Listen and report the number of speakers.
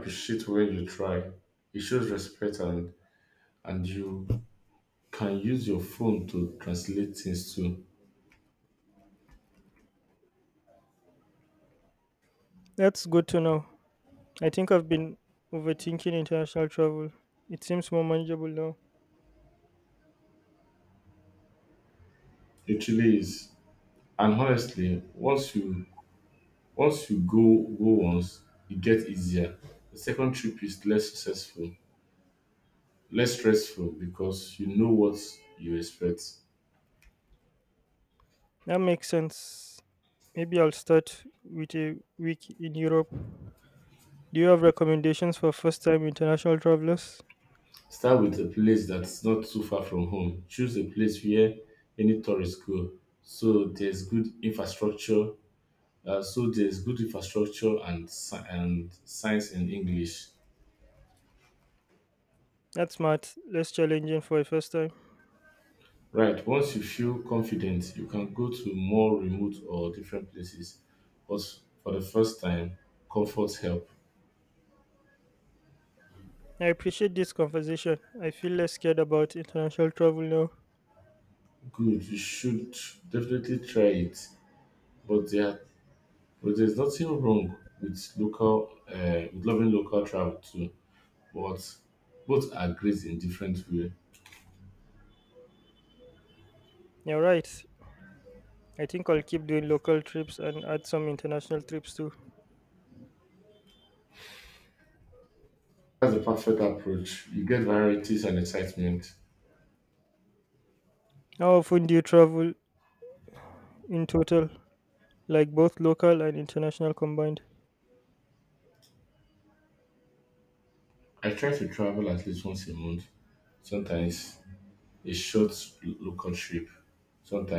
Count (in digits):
2